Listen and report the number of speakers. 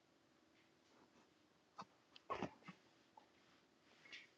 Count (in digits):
0